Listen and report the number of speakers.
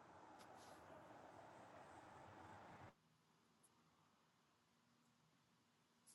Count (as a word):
zero